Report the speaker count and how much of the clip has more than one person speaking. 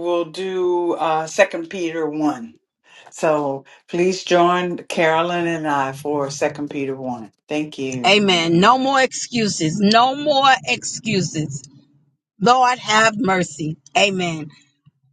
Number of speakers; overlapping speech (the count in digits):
2, about 1%